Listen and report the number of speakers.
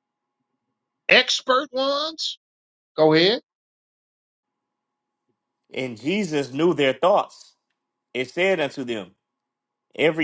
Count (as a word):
two